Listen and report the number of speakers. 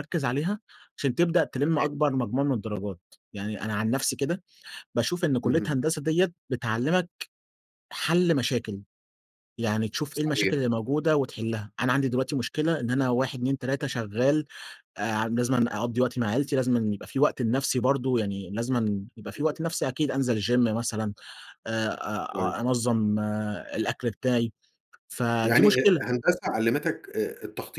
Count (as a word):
two